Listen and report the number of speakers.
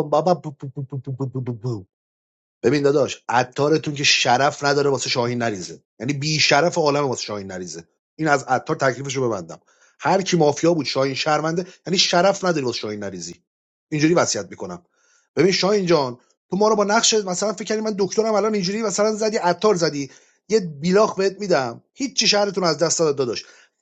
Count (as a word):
one